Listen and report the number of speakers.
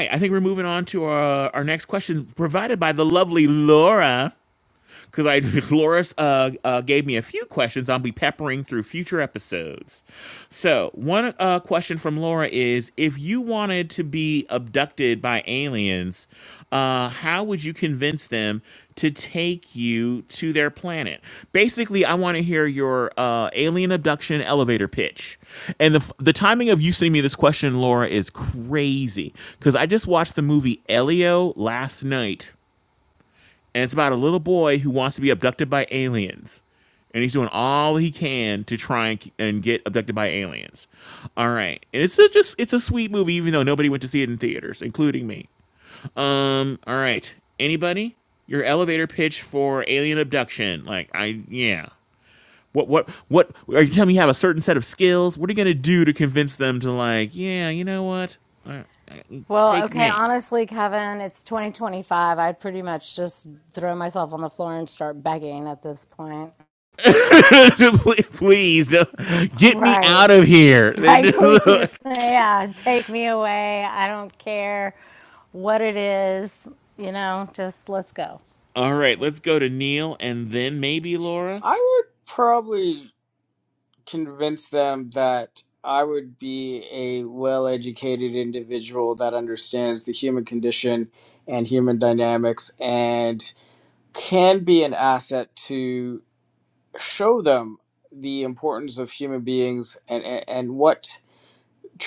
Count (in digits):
3